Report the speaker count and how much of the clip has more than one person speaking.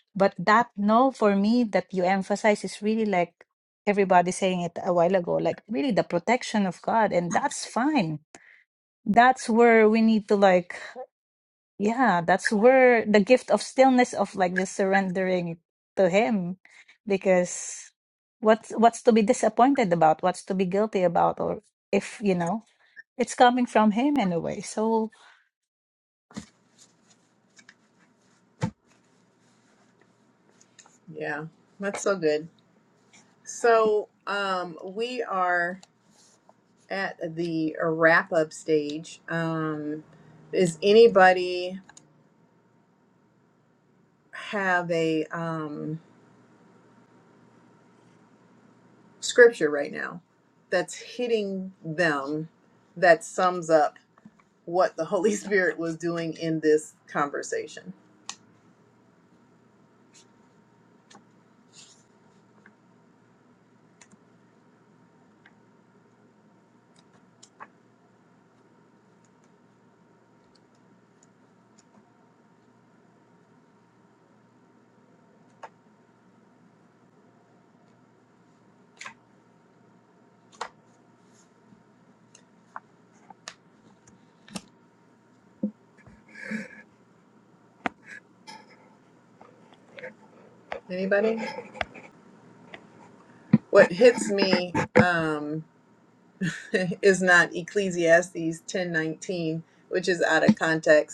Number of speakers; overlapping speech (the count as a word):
two, no overlap